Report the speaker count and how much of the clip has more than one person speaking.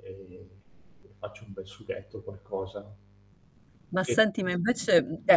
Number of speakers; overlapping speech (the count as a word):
two, about 2%